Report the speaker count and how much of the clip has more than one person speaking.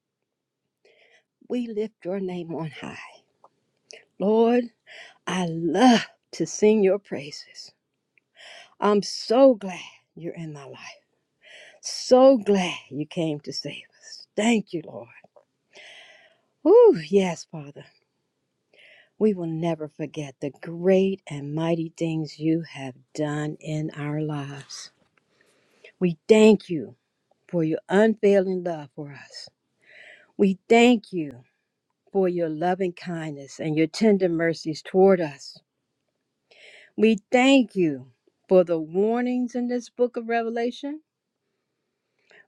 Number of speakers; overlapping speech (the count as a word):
one, no overlap